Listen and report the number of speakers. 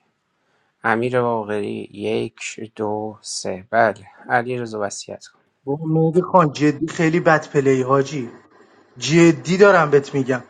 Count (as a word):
two